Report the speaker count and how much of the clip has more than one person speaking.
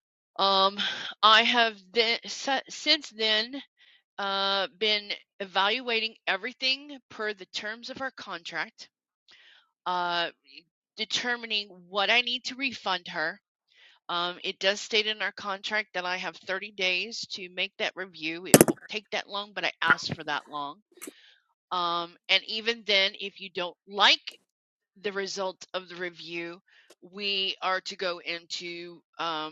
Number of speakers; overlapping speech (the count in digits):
1, no overlap